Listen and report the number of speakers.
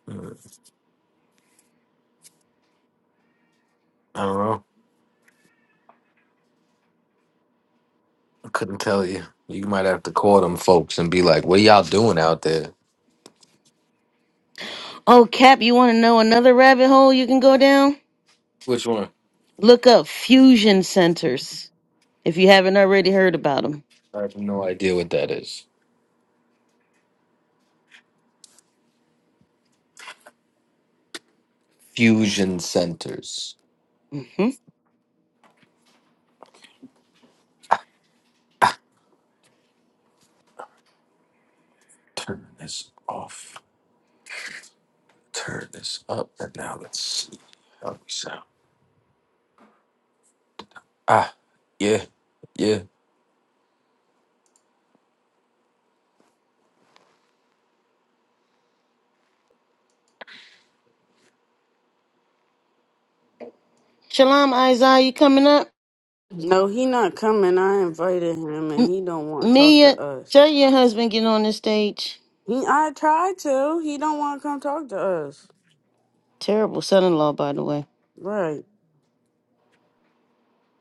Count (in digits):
3